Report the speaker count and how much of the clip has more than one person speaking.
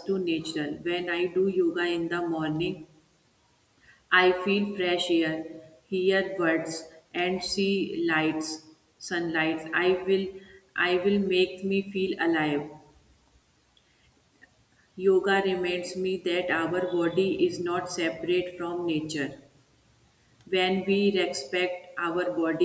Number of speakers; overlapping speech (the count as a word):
one, no overlap